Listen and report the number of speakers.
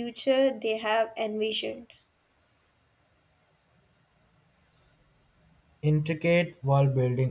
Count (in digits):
2